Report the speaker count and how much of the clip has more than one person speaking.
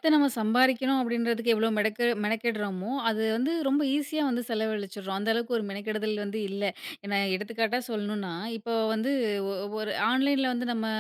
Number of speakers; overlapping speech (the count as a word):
one, no overlap